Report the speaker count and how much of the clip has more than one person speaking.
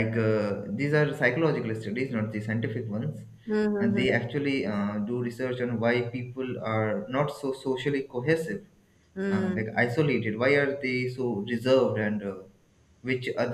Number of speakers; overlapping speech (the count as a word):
two, about 5%